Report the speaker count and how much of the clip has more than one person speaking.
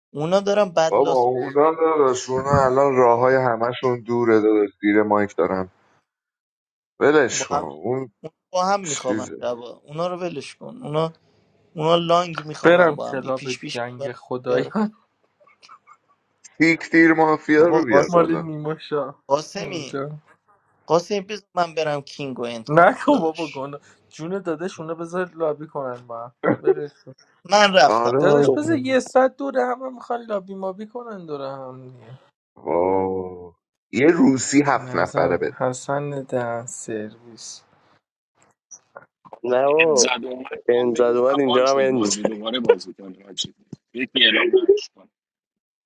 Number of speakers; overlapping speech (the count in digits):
5, about 17%